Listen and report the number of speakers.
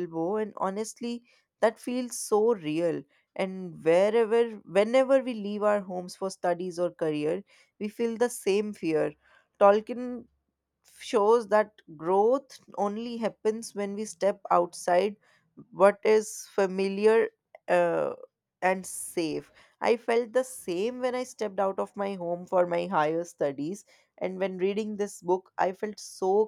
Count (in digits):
1